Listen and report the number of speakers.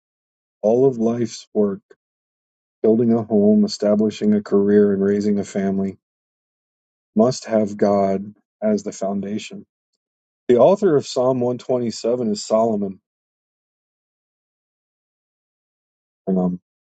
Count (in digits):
1